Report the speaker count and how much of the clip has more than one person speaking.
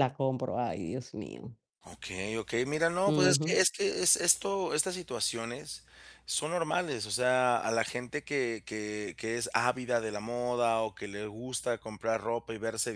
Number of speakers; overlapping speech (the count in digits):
2, about 4%